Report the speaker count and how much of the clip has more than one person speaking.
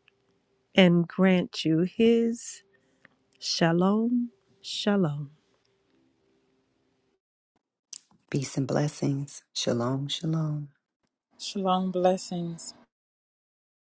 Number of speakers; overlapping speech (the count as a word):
three, no overlap